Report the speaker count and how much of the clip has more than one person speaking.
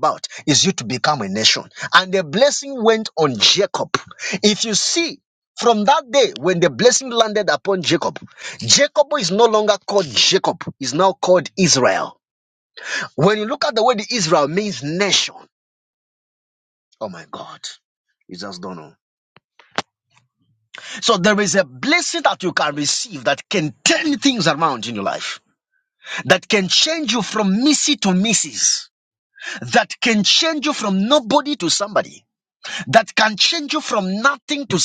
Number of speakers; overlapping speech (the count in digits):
1, no overlap